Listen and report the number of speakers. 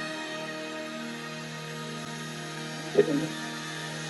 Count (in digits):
0